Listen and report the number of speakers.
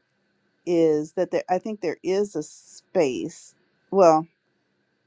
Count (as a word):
one